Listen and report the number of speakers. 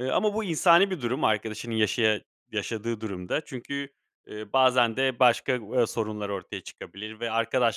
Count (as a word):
one